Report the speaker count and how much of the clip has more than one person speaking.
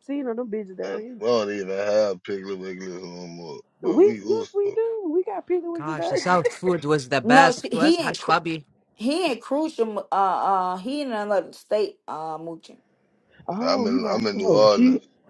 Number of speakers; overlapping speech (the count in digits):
4, about 27%